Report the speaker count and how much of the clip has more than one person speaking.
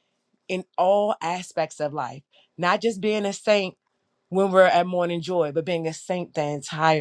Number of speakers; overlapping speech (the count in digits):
1, no overlap